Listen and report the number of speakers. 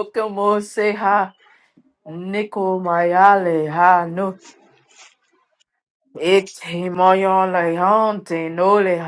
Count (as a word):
one